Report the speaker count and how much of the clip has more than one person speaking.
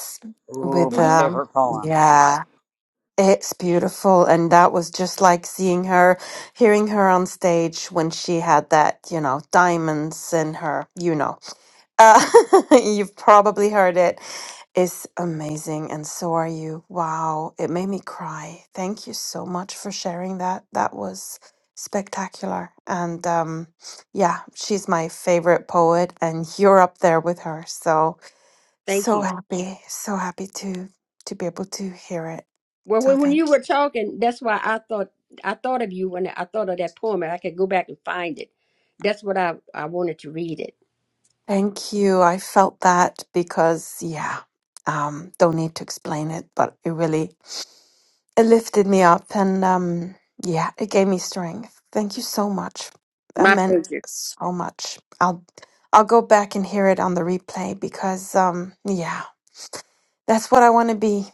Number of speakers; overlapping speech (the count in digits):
3, about 3%